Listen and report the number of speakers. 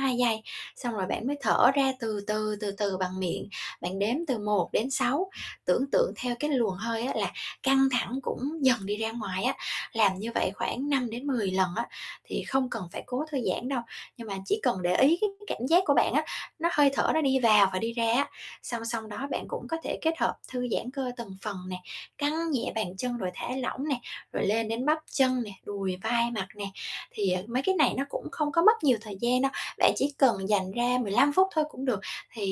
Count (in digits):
1